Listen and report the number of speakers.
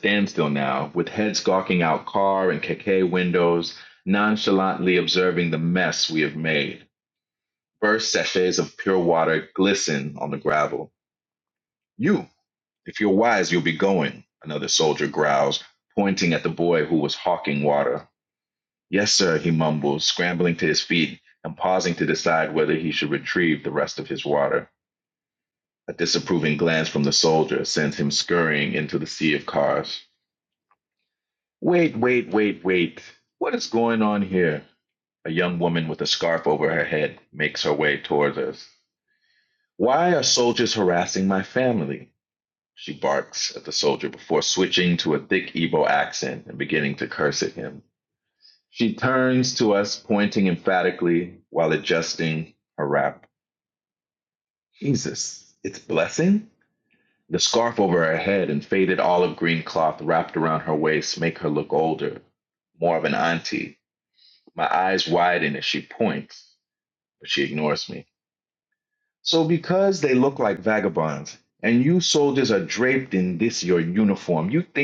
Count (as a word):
one